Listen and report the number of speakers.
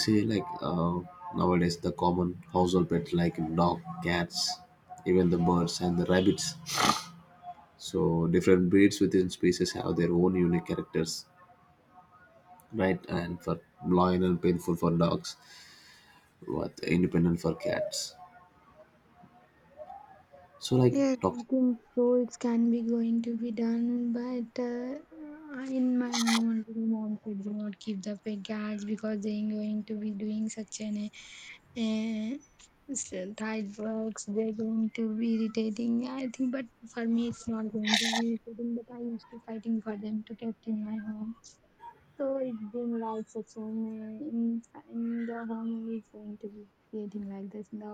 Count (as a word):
two